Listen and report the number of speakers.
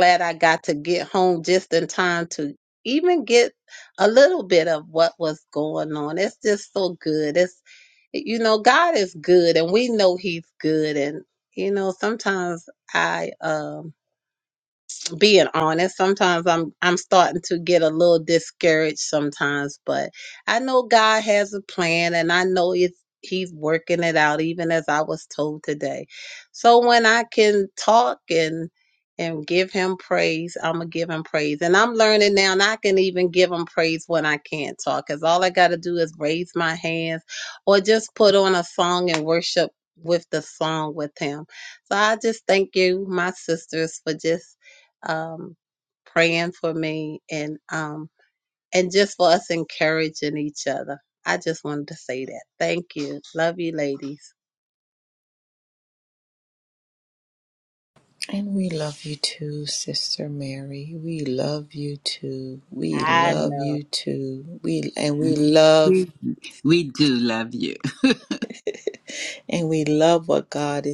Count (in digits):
3